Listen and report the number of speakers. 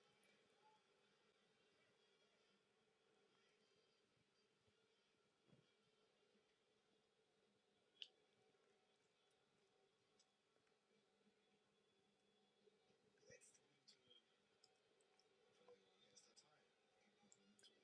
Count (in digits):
0